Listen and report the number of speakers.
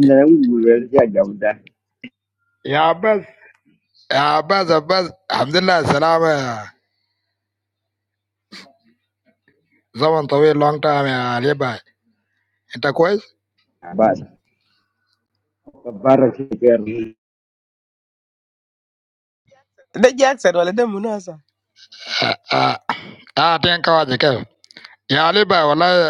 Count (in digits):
3